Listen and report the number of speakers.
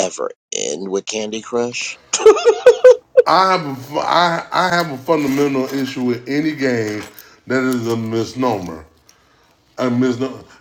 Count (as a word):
two